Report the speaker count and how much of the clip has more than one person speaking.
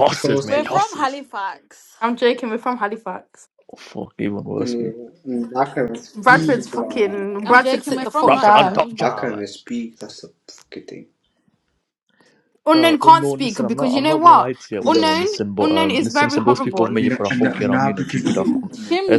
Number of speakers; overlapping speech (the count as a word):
four, about 52%